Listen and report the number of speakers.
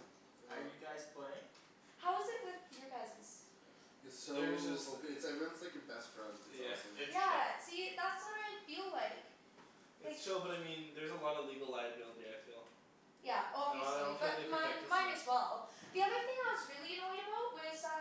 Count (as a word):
four